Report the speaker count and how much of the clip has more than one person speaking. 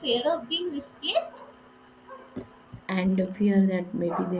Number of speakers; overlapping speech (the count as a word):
two, no overlap